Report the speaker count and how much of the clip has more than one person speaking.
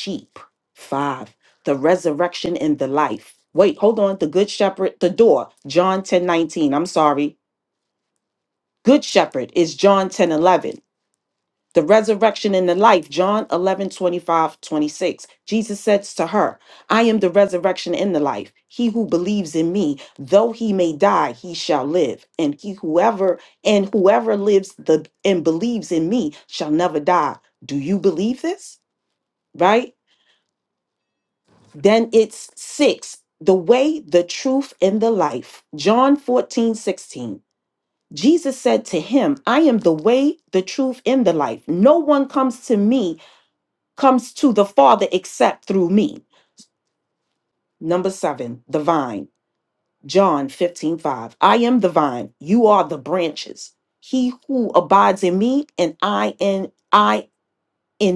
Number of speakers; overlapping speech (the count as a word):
one, no overlap